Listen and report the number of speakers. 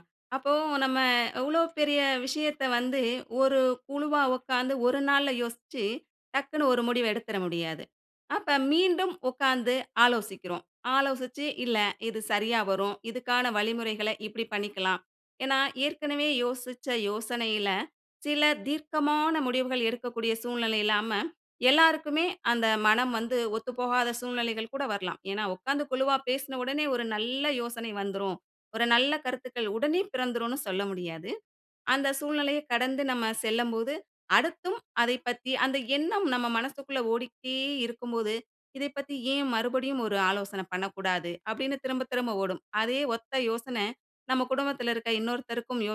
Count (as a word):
one